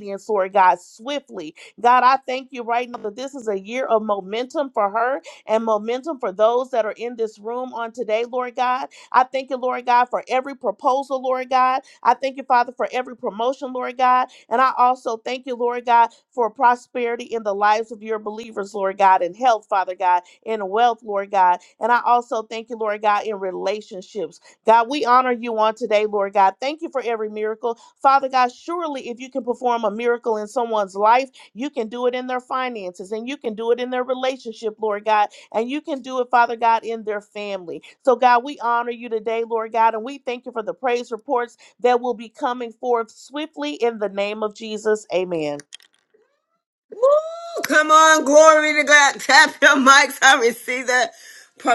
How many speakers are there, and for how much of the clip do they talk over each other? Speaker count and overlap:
two, no overlap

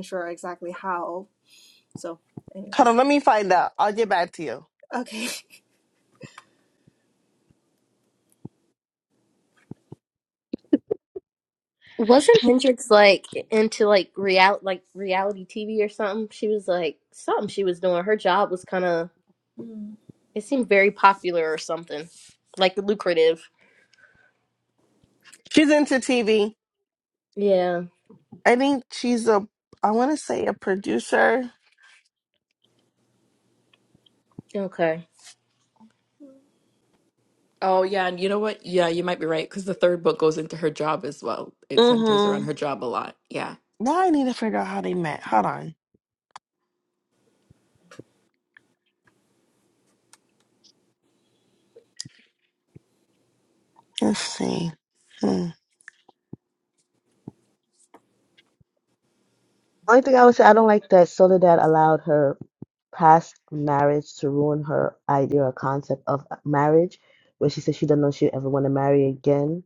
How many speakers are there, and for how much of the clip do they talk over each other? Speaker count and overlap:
five, about 1%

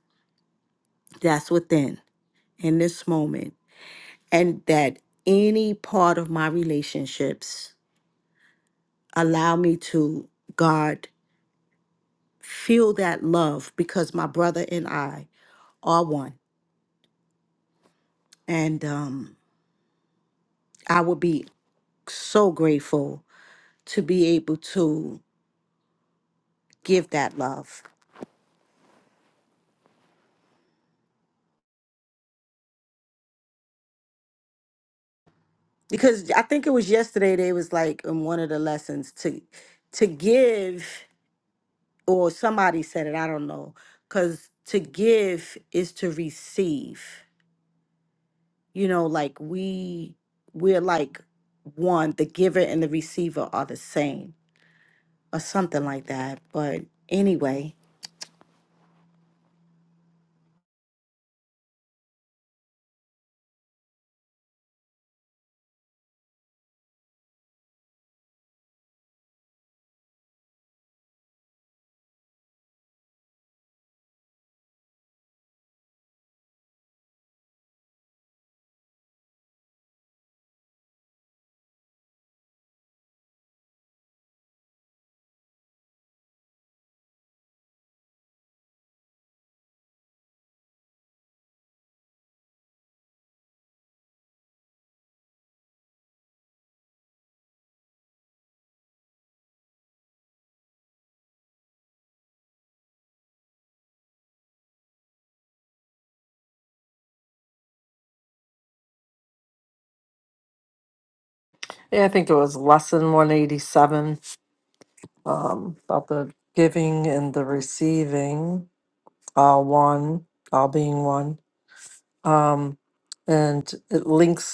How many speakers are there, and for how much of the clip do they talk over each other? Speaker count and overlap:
two, no overlap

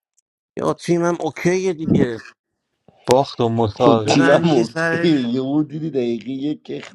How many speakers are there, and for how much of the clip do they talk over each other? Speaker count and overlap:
three, about 21%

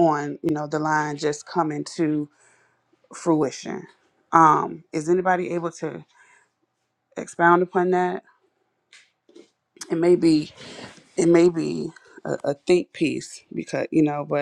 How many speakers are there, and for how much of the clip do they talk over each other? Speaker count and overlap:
one, no overlap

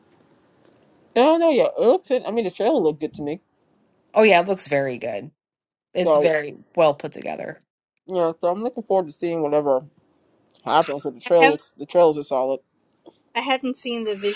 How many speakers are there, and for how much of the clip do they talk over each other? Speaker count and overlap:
three, about 4%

